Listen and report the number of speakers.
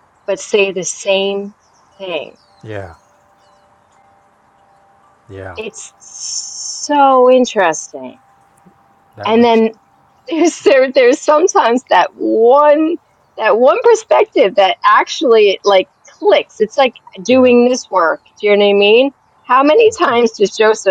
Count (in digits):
2